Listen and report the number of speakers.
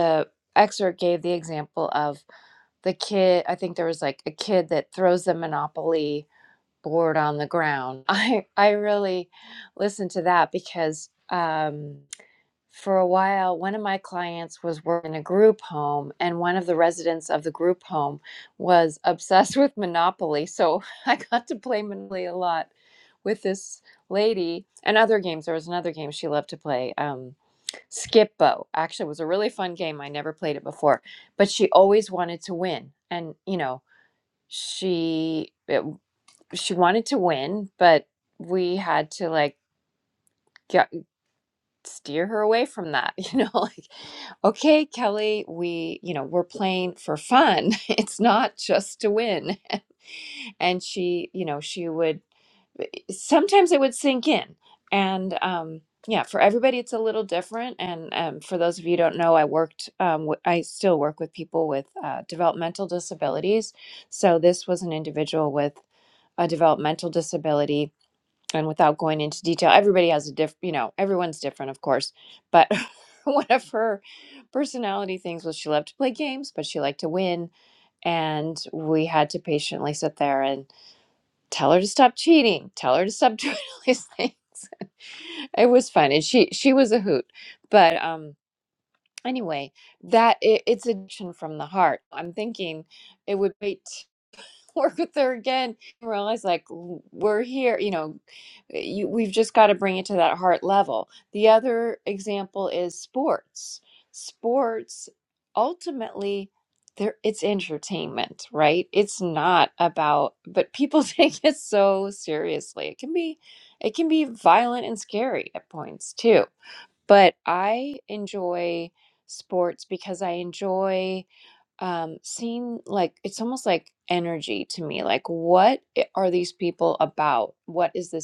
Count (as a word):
one